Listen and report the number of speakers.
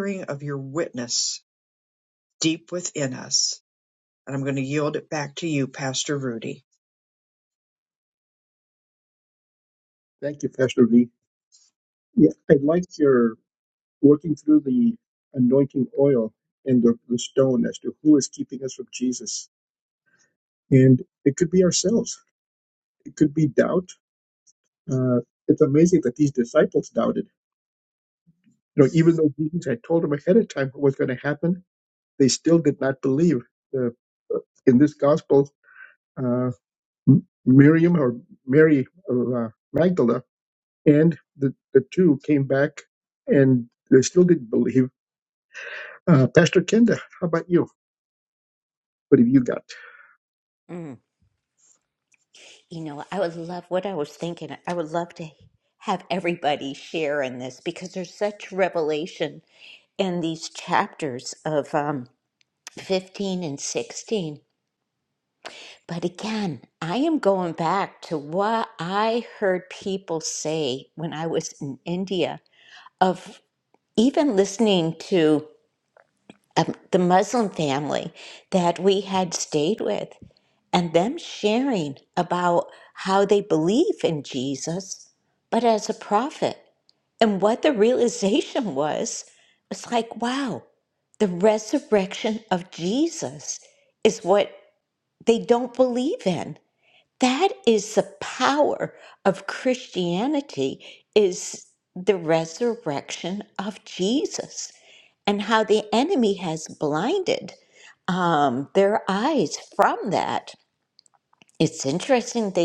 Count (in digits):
3